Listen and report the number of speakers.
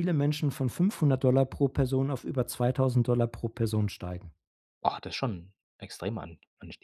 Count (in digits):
2